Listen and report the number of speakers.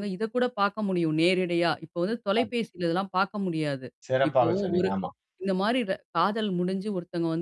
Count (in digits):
2